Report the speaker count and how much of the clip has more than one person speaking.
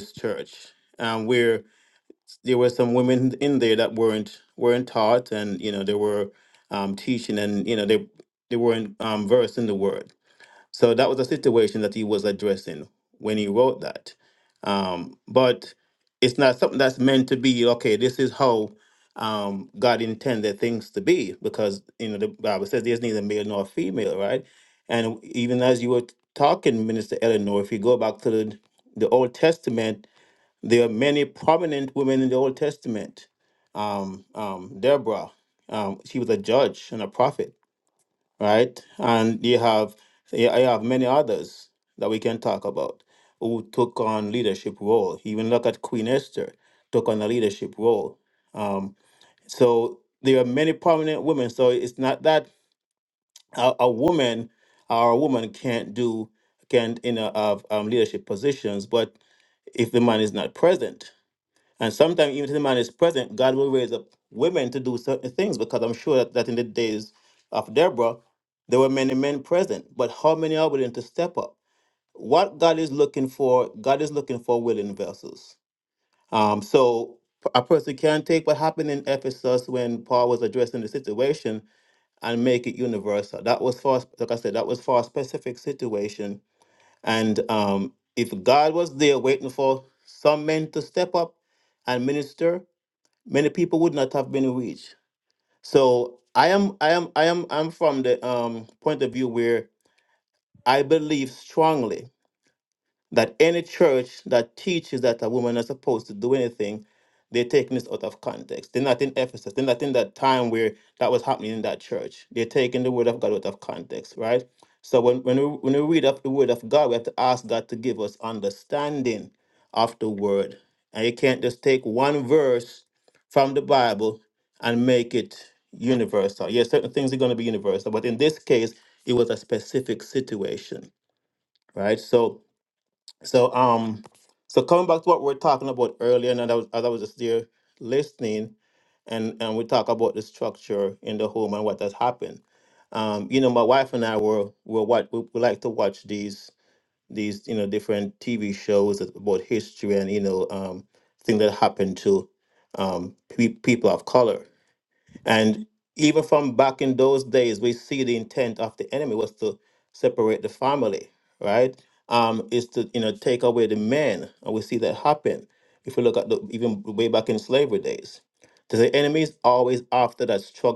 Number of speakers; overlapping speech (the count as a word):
one, no overlap